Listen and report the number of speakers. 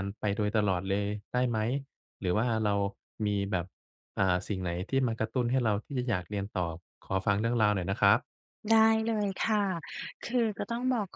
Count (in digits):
2